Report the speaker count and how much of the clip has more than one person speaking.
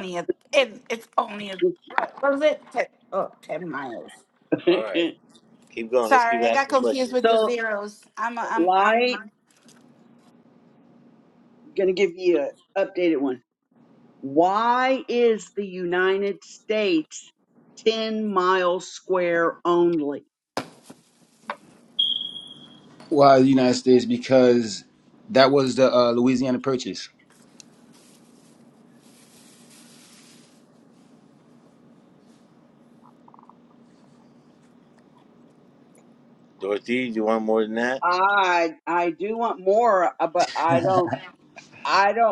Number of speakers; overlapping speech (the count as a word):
four, about 6%